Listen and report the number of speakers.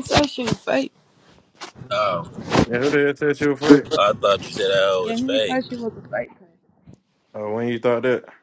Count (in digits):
3